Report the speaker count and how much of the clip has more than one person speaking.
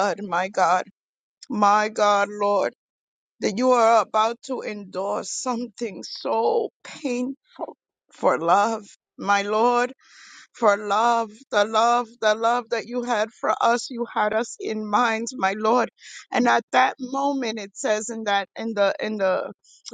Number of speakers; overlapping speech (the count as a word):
one, no overlap